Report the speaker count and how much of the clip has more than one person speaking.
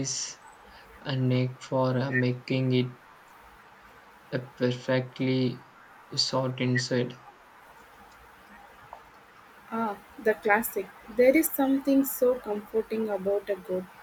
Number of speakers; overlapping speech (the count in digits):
2, no overlap